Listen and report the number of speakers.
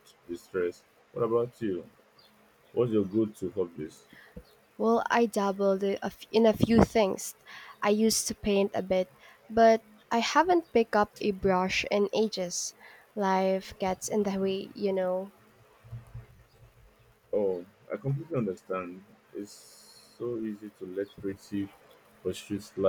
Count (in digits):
2